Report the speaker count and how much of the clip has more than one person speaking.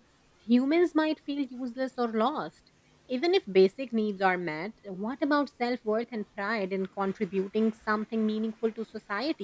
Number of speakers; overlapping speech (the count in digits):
1, no overlap